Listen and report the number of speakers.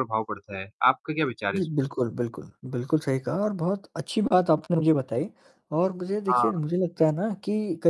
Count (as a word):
two